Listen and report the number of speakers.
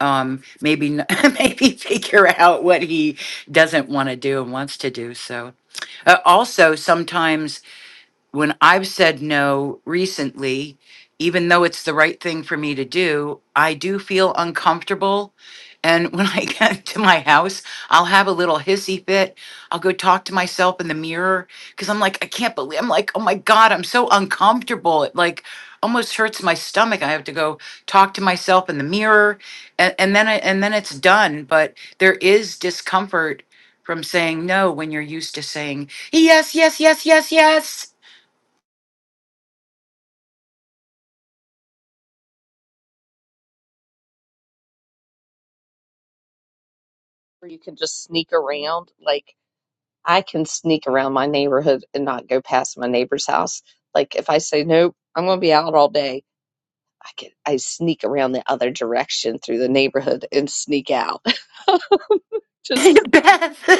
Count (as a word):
two